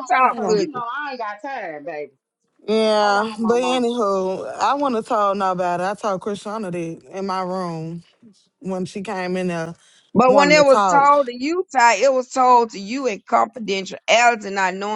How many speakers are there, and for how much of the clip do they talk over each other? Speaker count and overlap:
three, about 17%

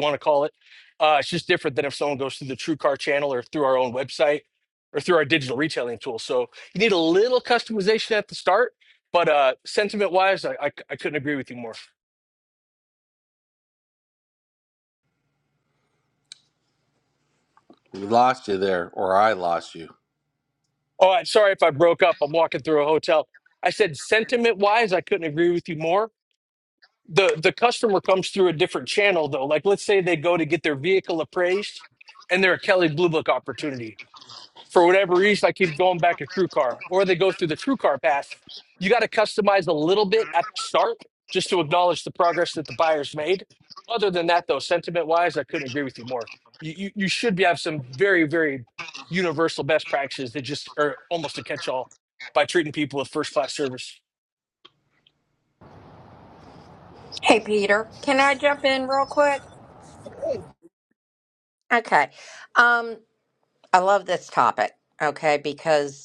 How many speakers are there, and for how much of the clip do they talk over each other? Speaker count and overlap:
three, no overlap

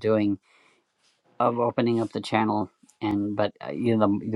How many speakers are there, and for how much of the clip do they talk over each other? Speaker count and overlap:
one, no overlap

